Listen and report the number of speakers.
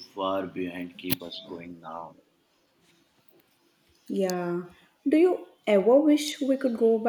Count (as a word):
two